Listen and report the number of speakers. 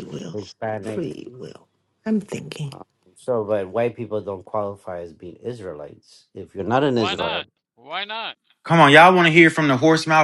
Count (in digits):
4